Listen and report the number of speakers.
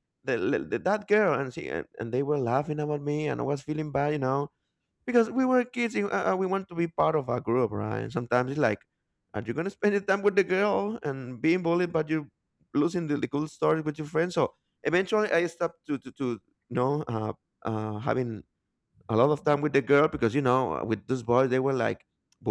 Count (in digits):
1